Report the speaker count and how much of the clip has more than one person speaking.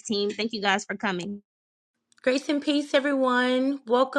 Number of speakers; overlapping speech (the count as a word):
two, no overlap